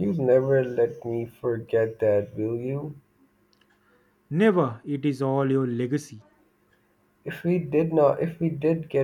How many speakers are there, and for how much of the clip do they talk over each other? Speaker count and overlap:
2, no overlap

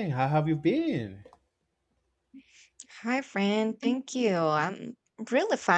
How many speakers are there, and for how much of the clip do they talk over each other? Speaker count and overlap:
2, no overlap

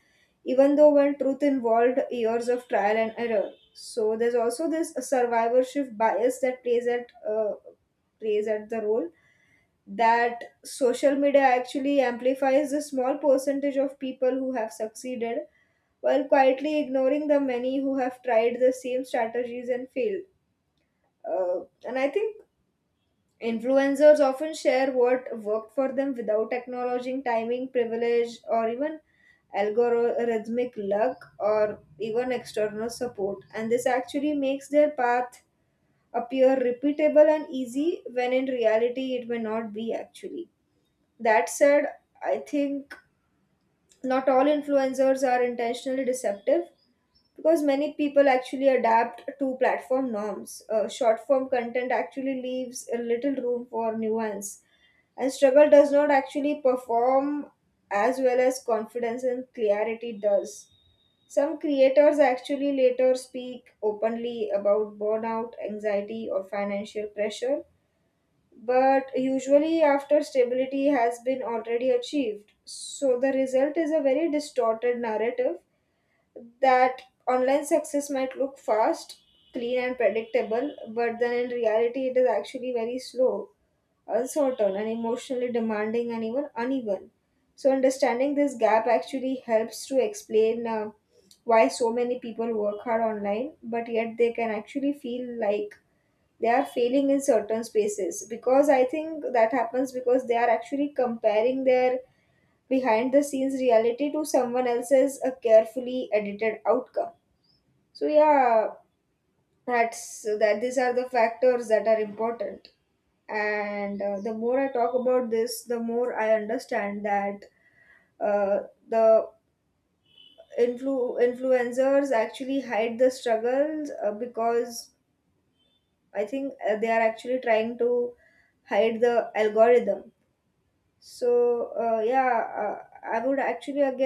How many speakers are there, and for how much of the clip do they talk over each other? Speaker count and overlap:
1, no overlap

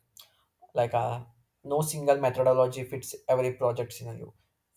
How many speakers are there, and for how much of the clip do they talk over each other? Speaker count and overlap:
1, no overlap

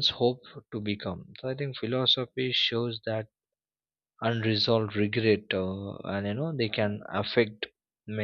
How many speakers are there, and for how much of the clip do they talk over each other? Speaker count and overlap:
1, no overlap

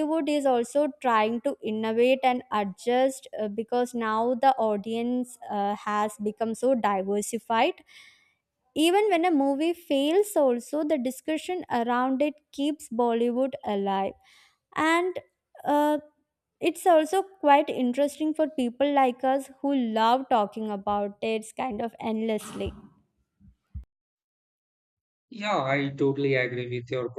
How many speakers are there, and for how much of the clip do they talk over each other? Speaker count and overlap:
2, no overlap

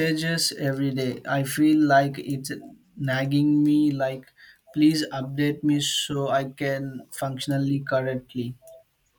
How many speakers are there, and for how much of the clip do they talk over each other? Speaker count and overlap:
1, no overlap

